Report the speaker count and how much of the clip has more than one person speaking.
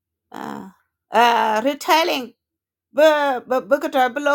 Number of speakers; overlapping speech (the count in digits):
1, no overlap